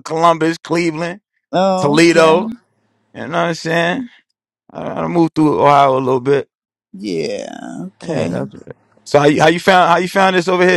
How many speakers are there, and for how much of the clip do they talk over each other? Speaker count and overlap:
two, about 10%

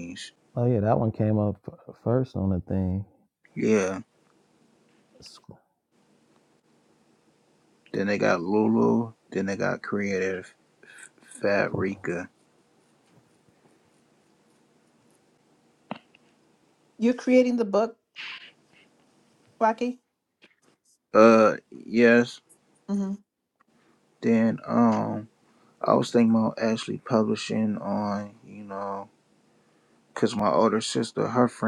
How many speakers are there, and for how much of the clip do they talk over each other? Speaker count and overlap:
three, about 1%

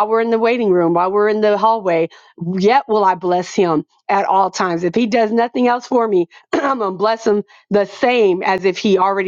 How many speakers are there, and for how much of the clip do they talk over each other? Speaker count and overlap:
one, no overlap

